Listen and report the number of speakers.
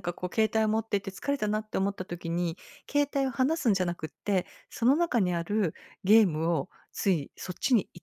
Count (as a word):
one